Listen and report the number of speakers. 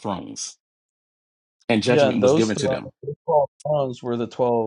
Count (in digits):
2